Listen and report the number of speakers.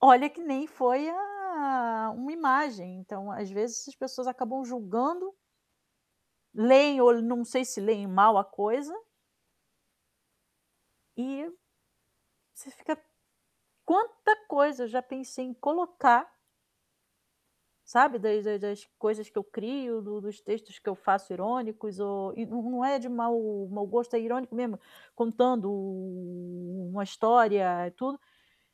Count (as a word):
one